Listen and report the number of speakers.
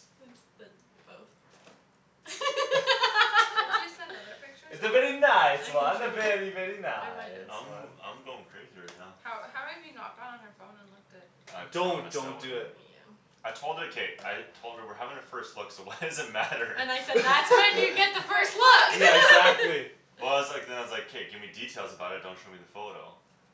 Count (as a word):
four